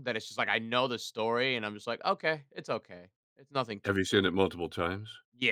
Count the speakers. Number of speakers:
two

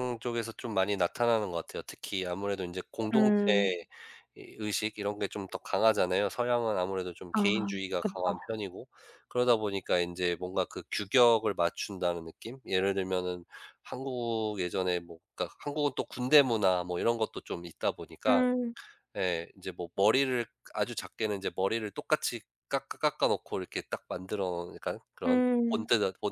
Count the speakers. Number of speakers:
two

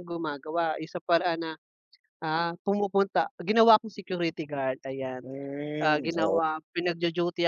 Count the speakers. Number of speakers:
two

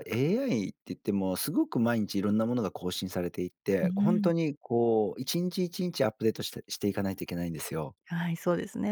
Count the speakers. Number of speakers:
two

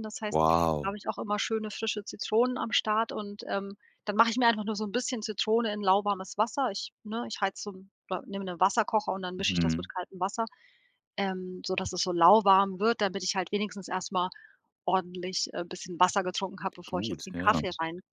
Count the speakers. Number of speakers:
two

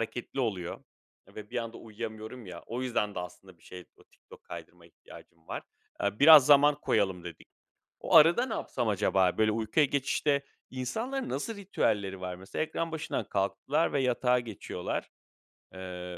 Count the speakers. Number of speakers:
one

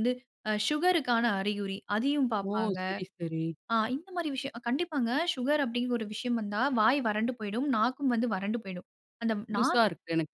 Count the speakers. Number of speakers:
two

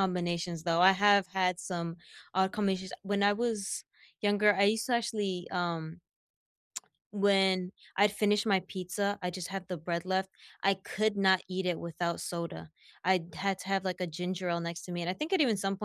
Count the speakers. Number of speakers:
one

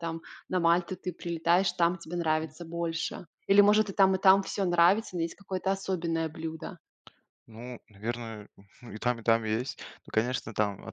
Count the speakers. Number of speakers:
two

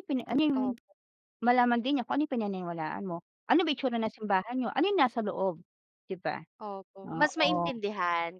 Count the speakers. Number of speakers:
two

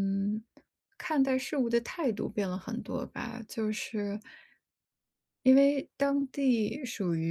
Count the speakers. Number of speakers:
one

